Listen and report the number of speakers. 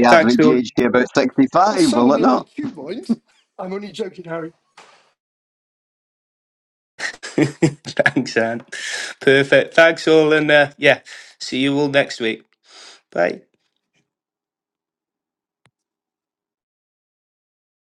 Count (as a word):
three